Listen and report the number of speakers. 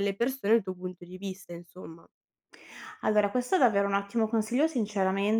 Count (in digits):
2